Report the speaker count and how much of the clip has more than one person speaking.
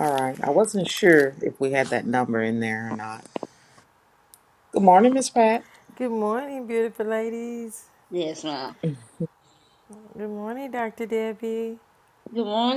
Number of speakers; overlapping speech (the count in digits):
3, no overlap